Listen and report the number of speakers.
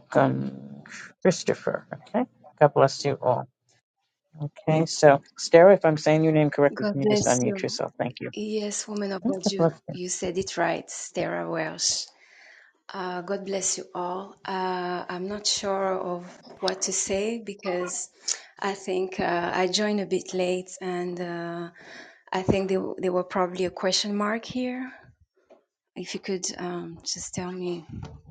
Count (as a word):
two